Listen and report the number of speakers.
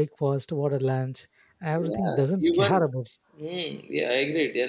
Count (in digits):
2